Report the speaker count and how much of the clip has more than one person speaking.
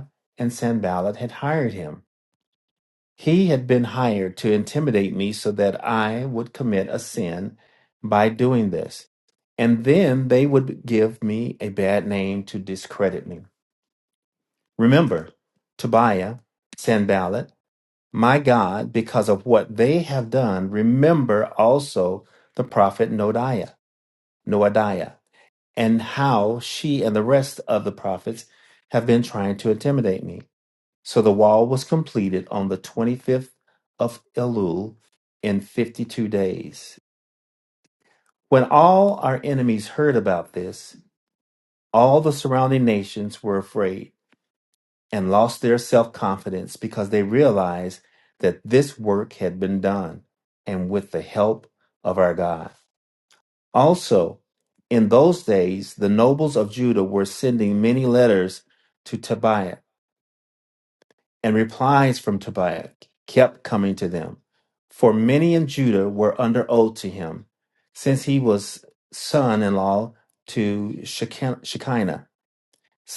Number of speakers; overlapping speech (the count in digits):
1, no overlap